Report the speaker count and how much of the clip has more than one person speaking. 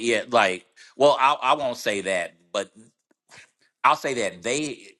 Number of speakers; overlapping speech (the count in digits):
1, no overlap